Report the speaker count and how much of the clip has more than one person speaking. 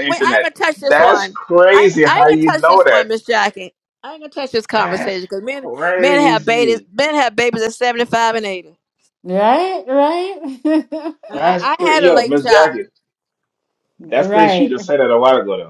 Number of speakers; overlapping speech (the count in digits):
3, about 32%